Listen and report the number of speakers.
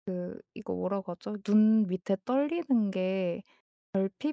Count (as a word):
one